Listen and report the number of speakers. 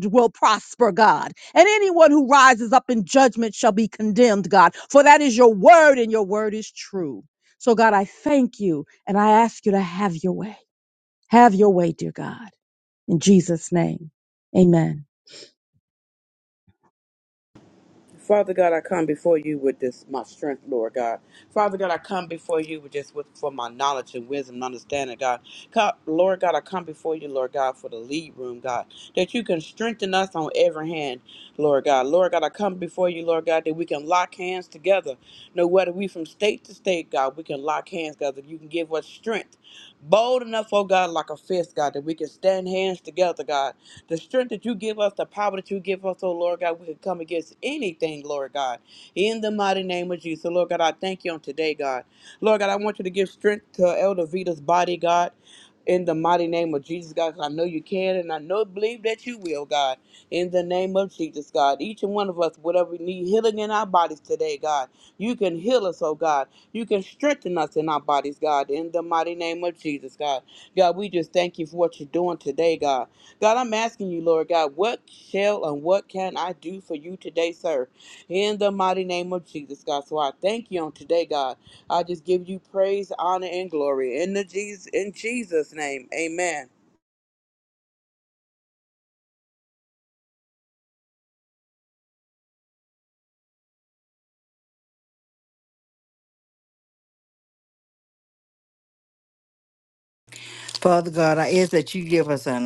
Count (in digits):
3